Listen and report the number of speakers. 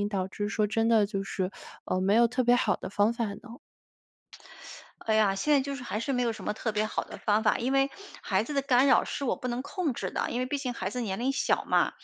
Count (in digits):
2